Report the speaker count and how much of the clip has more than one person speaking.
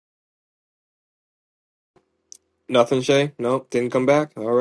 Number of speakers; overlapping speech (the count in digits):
1, no overlap